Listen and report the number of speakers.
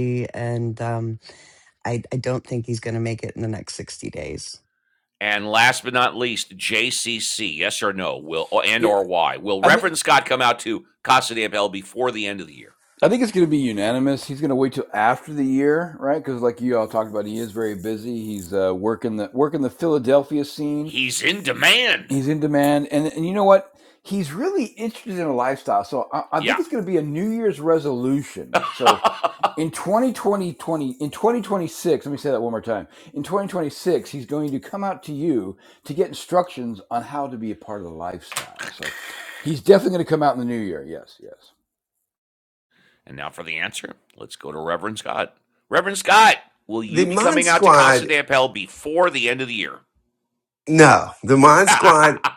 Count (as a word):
four